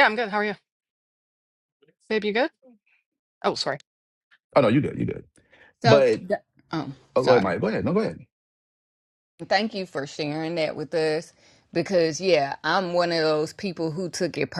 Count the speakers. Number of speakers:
3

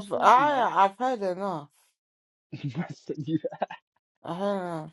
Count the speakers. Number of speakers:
2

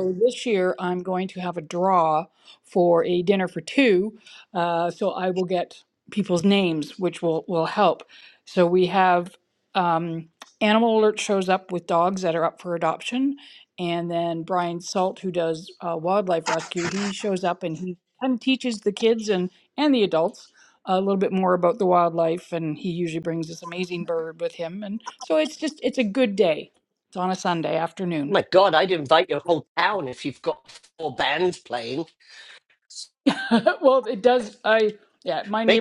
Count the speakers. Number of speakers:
2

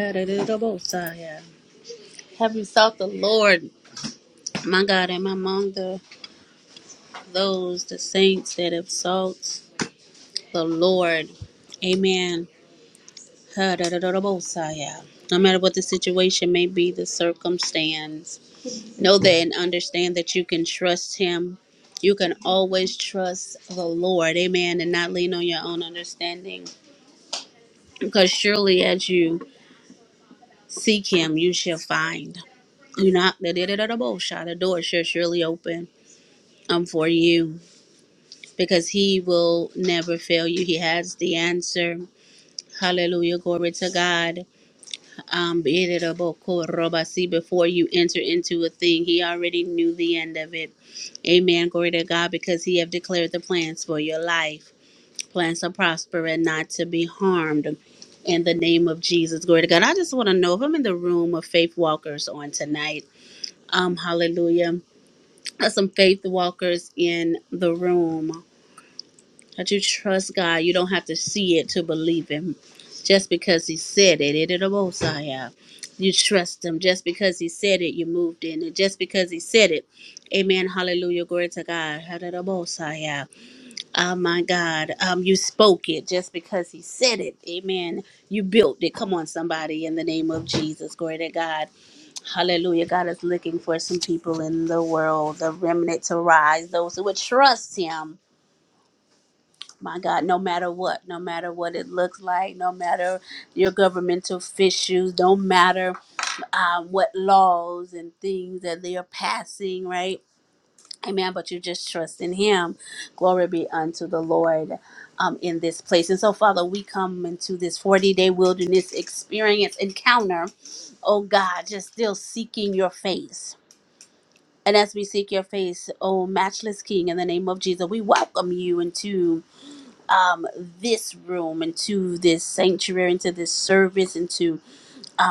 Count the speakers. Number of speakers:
1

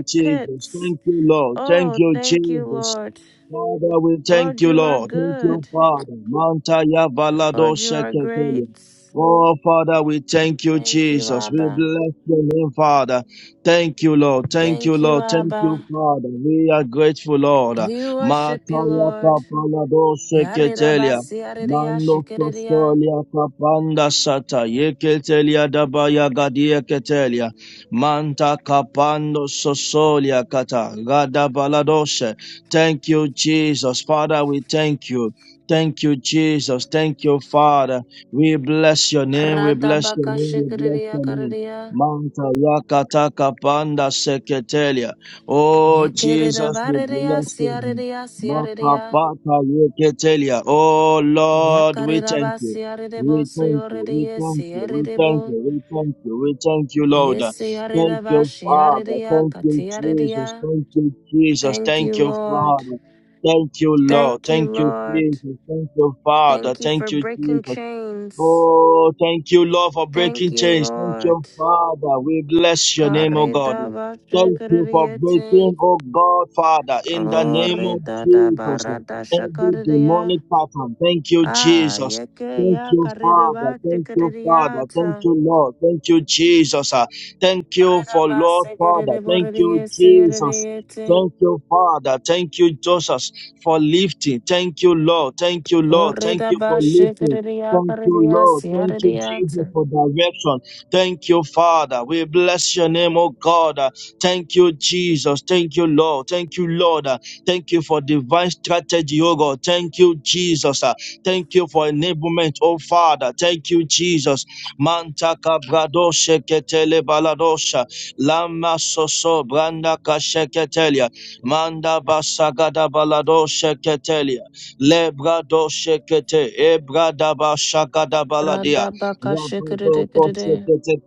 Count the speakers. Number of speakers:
2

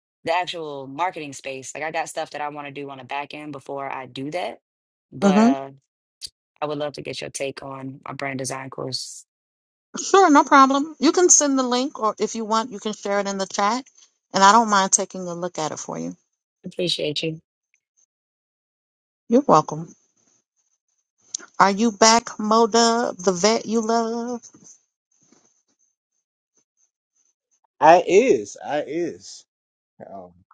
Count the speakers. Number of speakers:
3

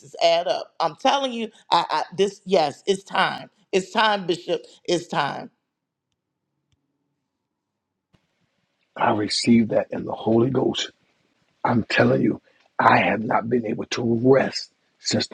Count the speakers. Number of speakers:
2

